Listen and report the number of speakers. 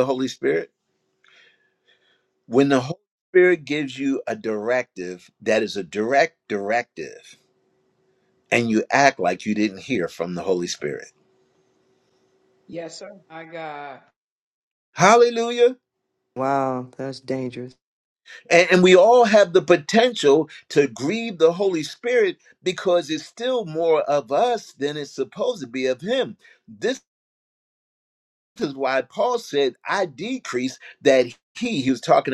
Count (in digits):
3